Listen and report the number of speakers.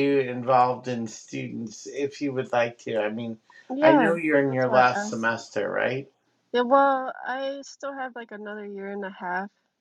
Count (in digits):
2